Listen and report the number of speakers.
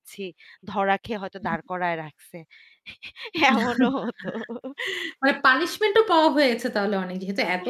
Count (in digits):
2